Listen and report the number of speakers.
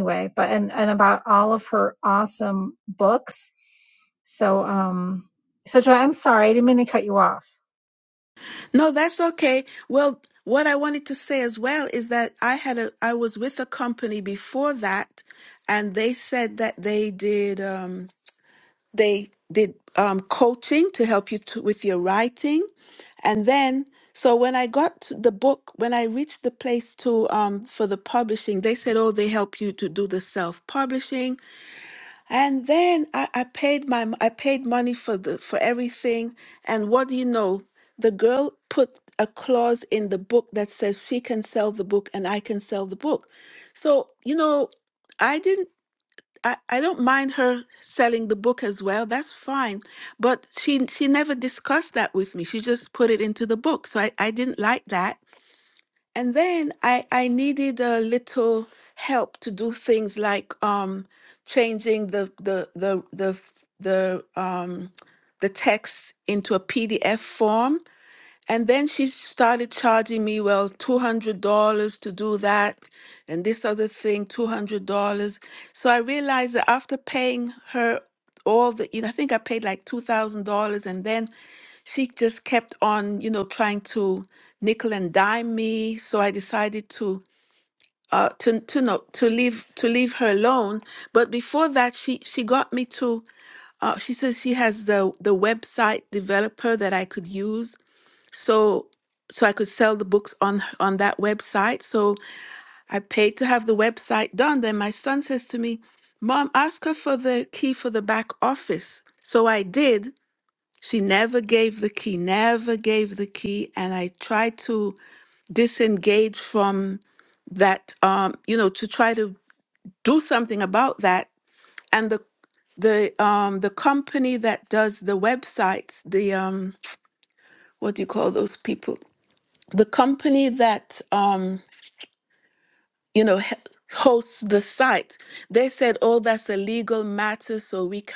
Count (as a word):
two